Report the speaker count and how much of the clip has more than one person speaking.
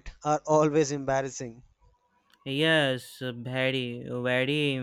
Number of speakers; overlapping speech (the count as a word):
two, no overlap